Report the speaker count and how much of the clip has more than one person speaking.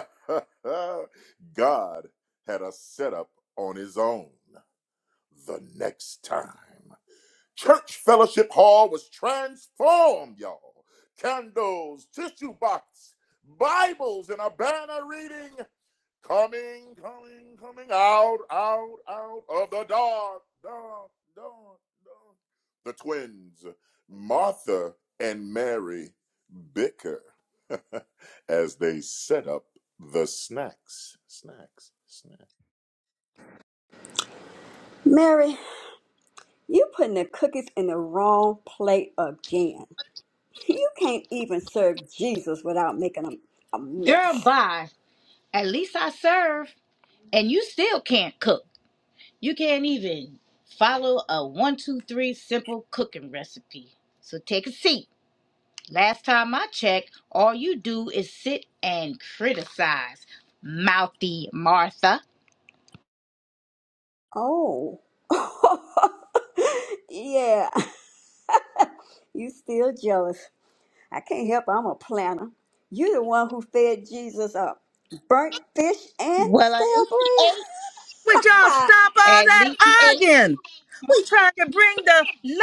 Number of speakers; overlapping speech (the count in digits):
4, about 4%